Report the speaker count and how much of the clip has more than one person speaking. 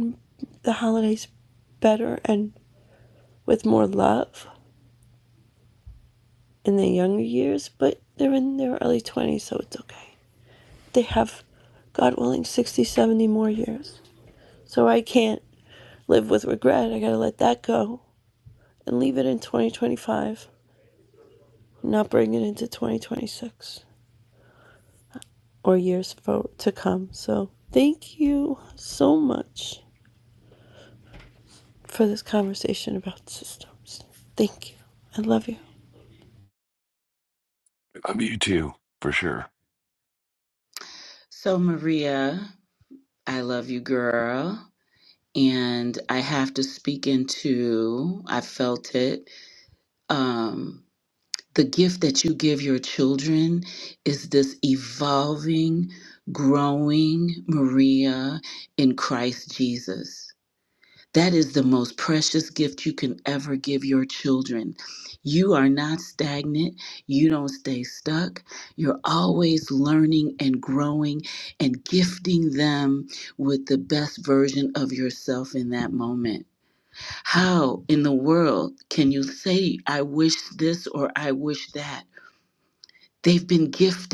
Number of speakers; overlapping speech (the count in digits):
3, no overlap